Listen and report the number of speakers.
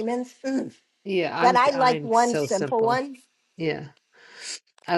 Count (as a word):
two